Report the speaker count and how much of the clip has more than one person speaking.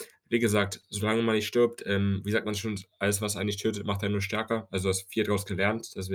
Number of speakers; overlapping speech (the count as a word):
one, no overlap